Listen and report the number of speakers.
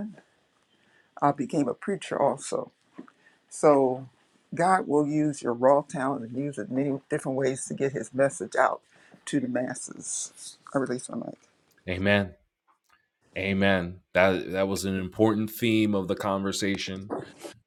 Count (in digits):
2